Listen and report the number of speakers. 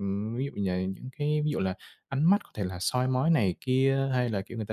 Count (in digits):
1